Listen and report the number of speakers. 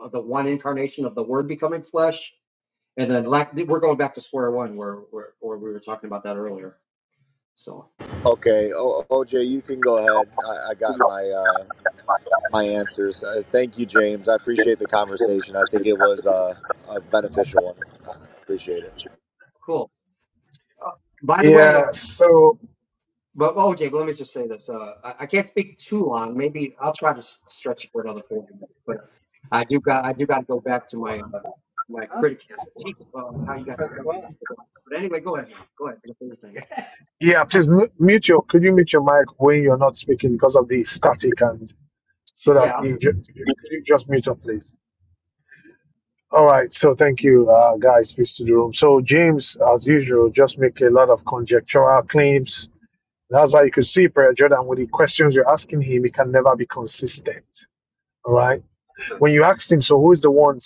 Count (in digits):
3